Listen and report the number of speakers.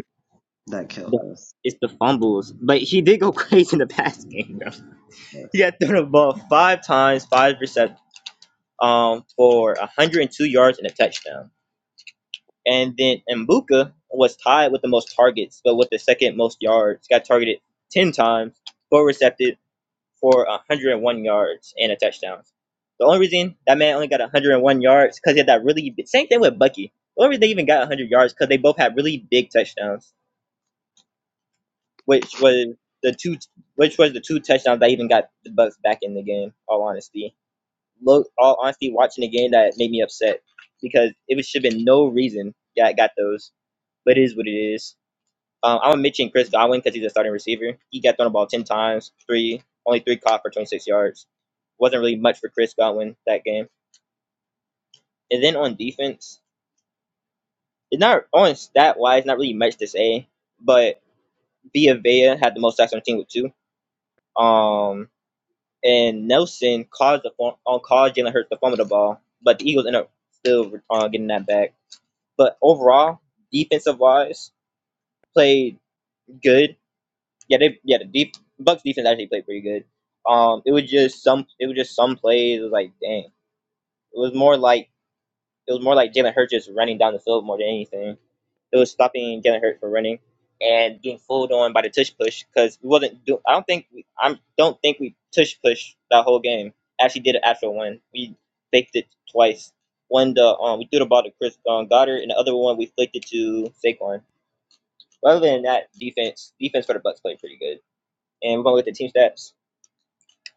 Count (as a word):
one